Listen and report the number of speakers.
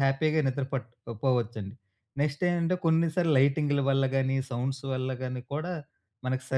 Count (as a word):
one